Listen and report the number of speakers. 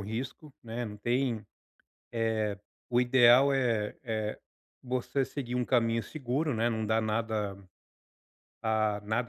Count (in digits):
1